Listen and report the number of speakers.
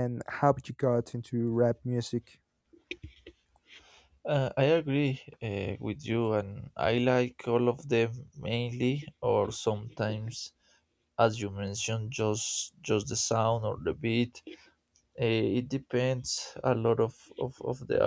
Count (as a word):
two